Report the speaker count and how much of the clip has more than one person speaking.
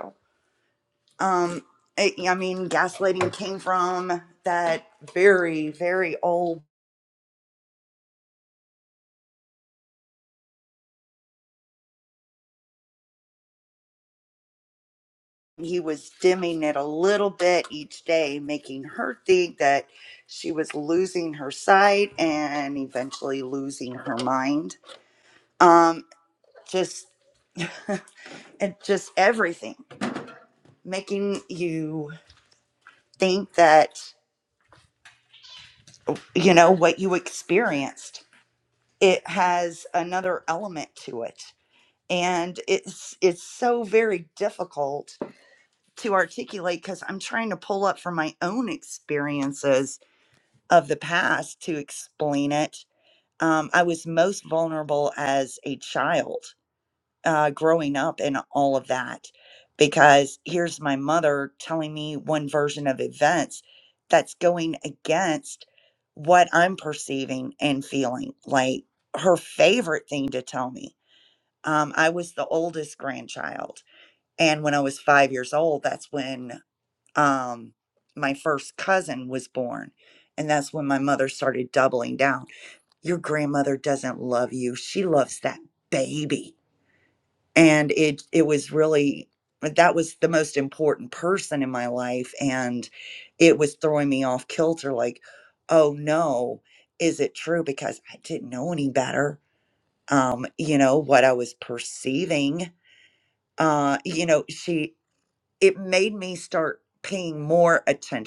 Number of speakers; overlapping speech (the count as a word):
one, no overlap